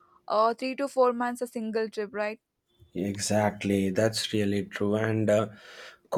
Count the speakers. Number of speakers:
2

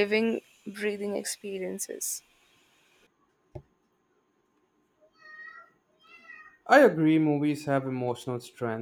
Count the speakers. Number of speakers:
2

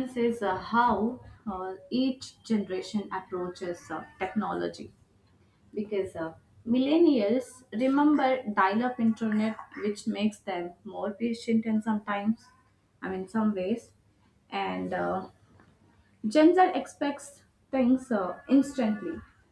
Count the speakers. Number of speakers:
1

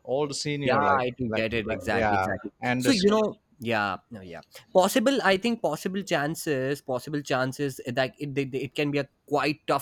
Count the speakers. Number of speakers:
2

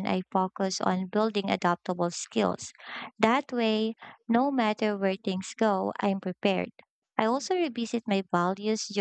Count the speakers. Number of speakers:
1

